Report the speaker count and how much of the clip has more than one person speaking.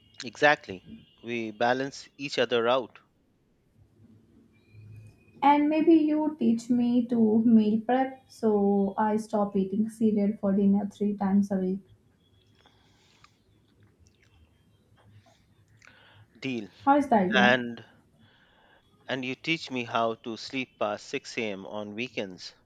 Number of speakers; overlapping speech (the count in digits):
2, about 1%